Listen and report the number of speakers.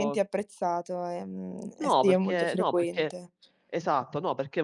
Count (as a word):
two